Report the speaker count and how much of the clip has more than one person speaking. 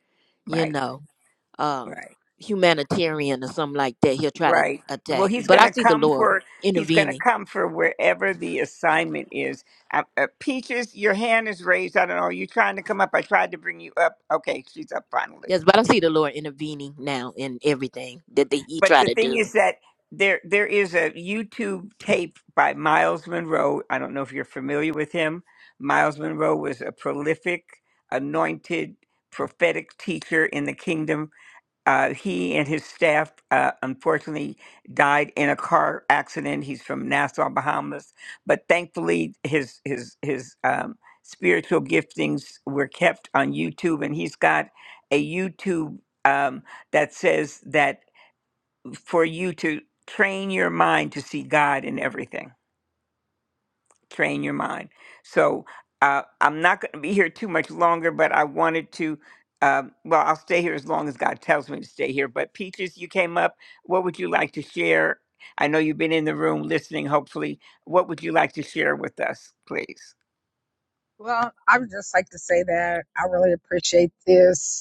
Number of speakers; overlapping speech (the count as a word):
three, about 4%